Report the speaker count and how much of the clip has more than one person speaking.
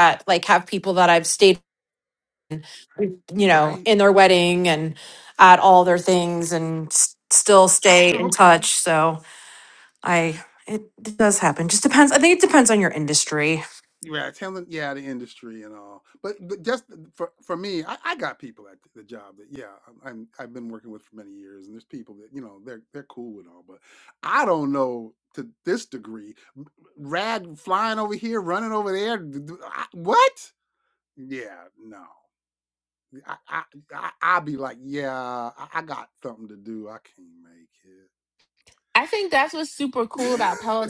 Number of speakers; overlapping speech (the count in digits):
3, about 3%